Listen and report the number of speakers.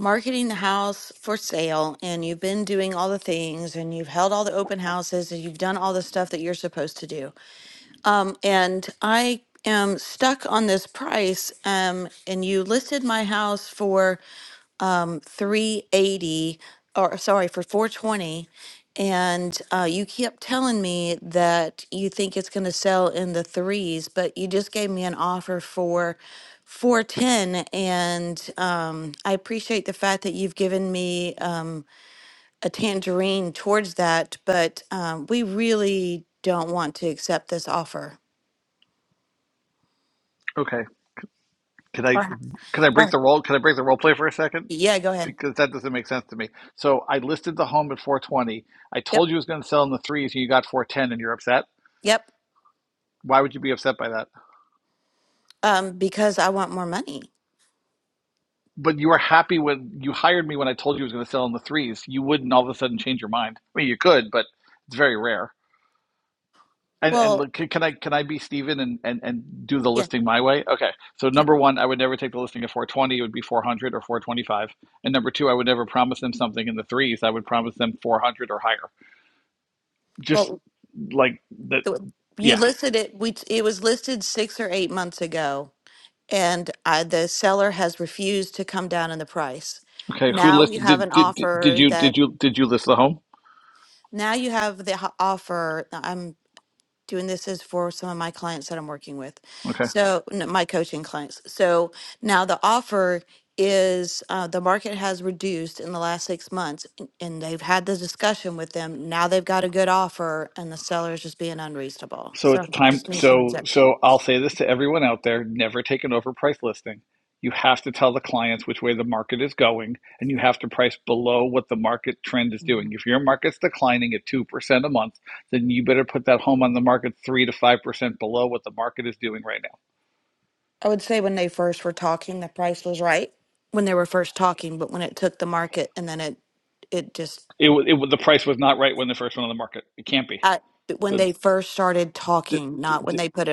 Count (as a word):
two